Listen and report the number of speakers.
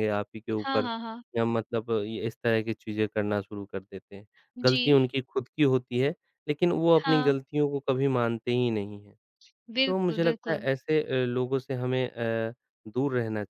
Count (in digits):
2